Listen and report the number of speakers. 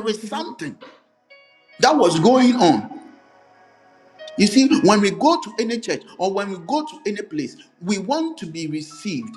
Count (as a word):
one